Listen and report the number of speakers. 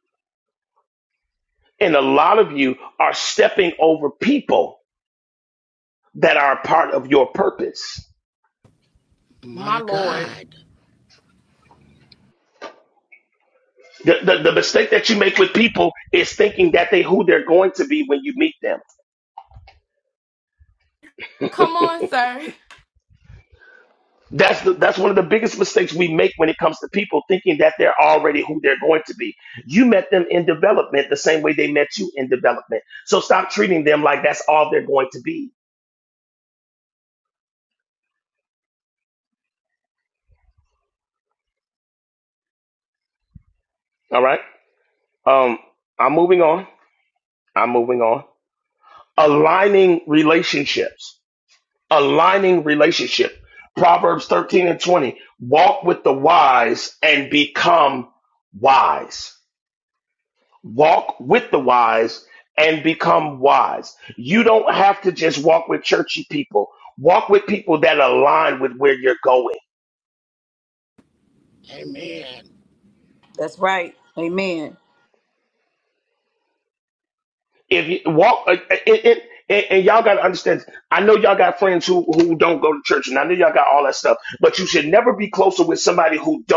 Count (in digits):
4